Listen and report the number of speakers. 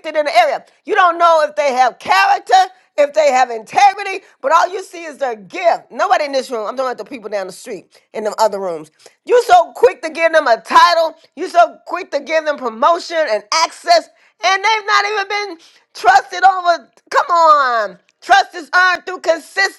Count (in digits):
1